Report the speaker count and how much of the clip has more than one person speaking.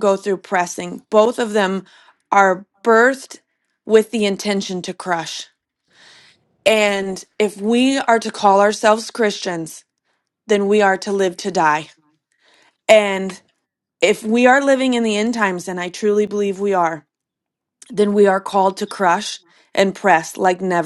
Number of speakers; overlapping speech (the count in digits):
1, no overlap